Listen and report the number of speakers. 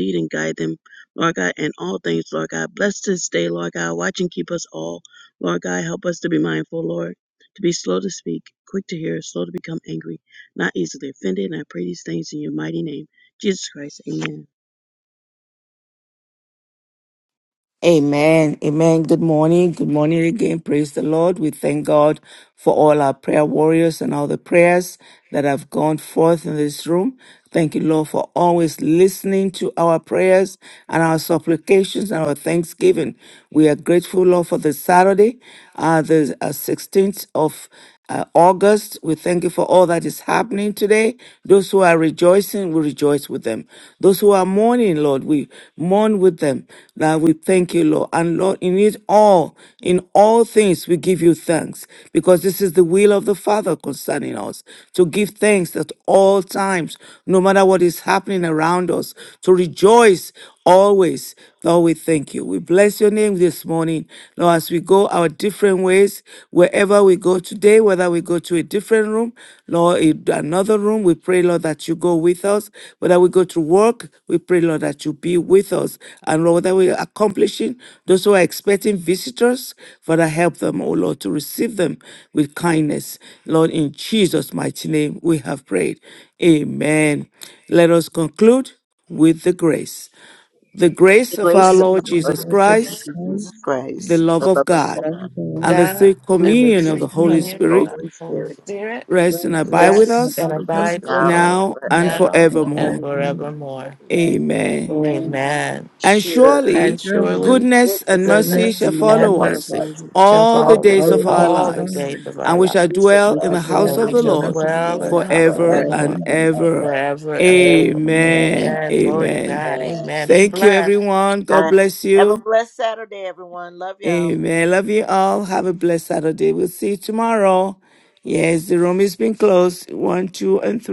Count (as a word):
four